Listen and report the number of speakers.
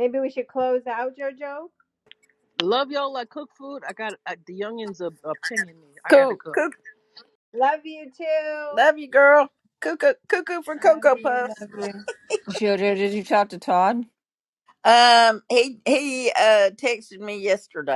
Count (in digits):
4